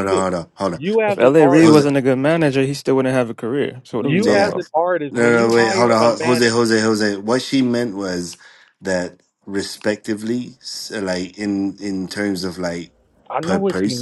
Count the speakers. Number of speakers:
3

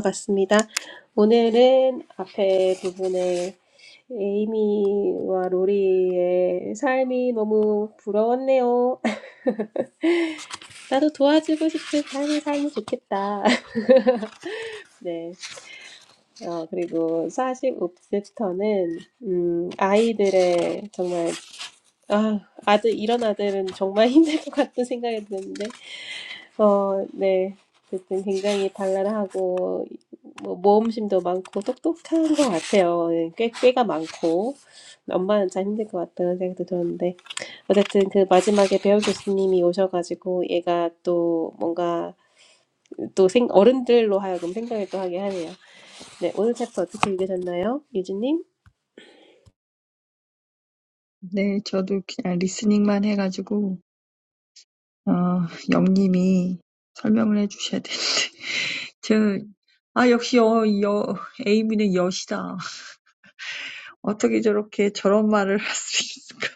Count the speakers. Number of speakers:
2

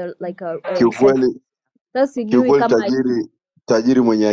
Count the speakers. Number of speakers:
2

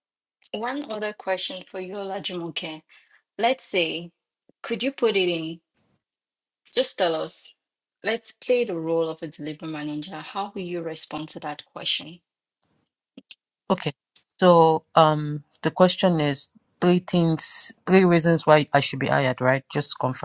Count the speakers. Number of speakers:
2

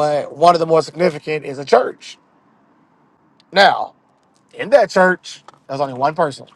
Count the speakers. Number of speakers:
1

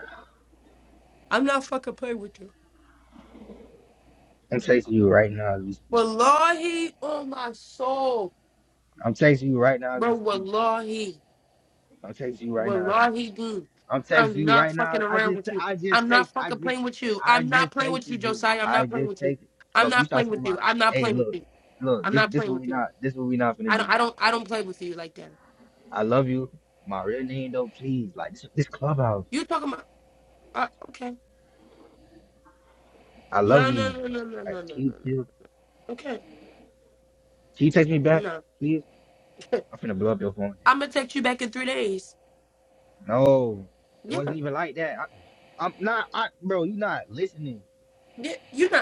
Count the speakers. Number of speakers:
2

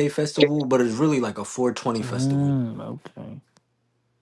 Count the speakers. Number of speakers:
2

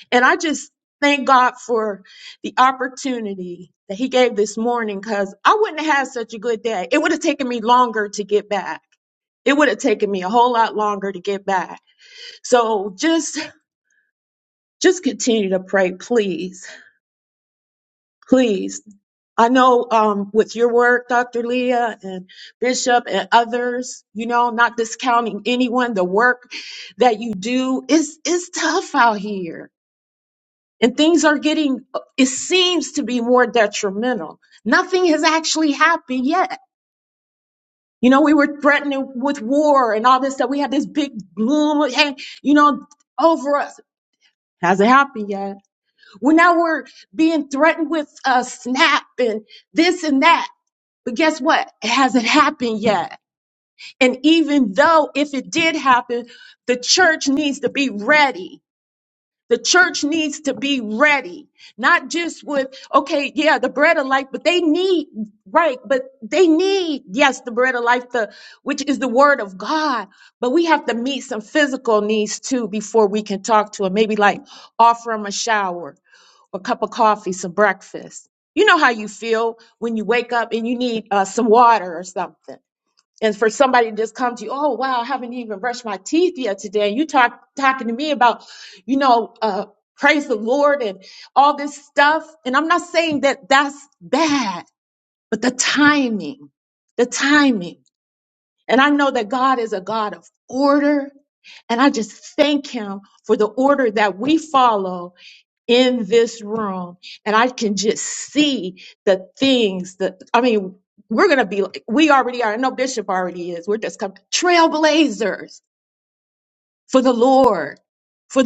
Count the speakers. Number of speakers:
1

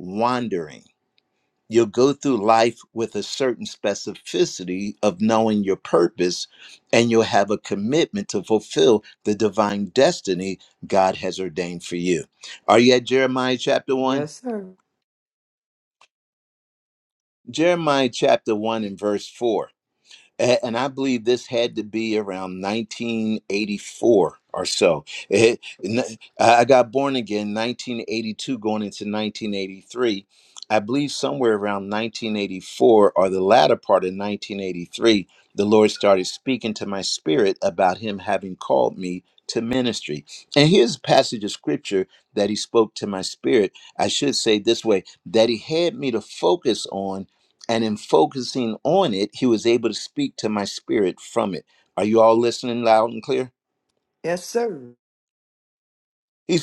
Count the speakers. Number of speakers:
2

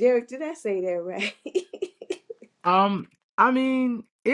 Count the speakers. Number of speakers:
2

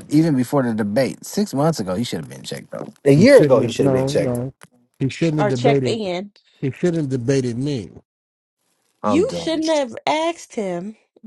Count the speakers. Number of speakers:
3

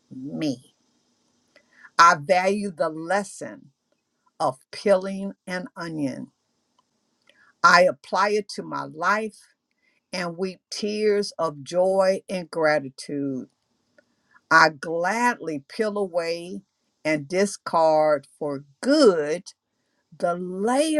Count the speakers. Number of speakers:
1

